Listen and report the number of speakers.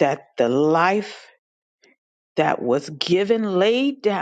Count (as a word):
one